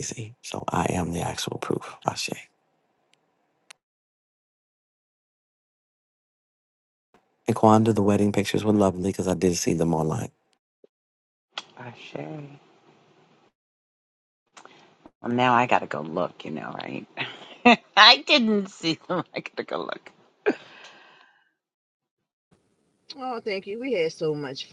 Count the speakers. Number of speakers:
3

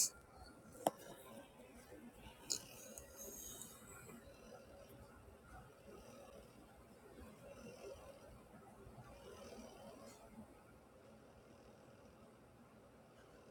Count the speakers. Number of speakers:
0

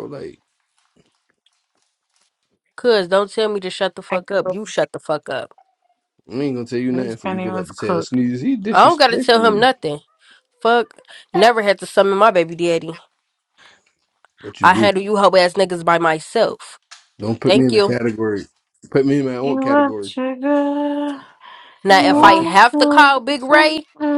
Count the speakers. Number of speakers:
3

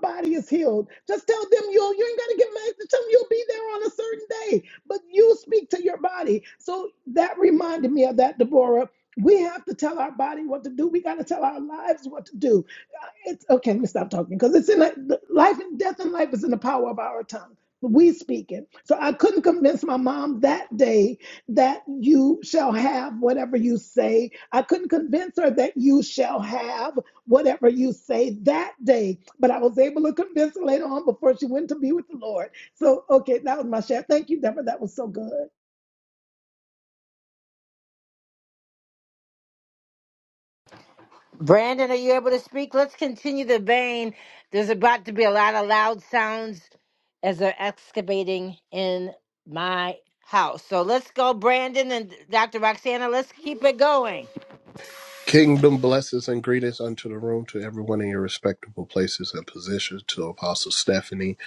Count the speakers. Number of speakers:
3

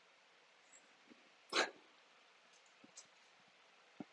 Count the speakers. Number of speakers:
0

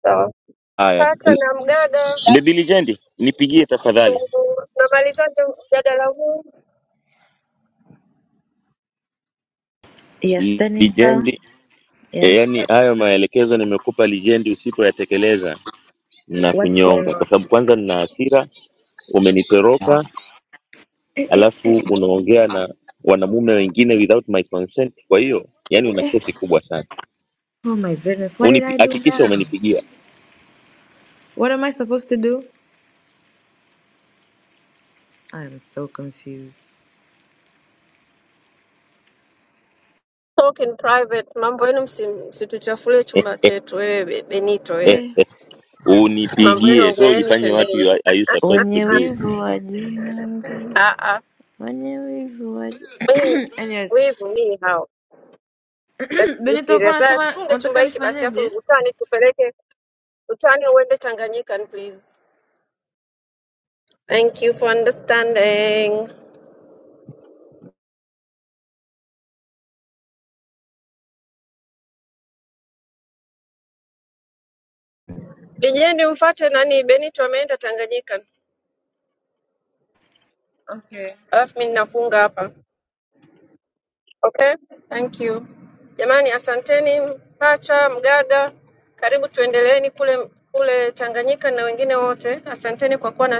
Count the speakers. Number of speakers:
3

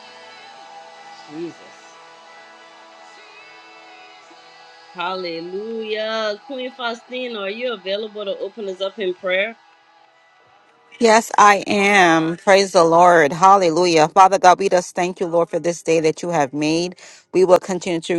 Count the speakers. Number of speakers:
2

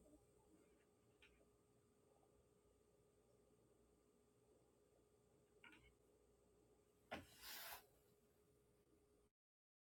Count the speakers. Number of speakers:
0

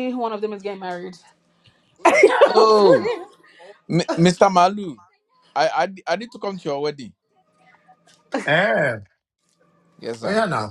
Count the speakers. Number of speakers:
3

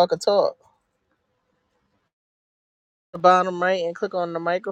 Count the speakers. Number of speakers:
1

